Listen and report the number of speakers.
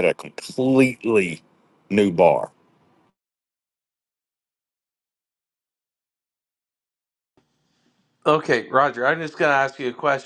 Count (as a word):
two